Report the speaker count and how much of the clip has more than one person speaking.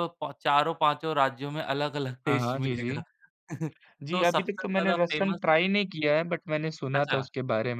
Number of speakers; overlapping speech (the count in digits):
2, about 30%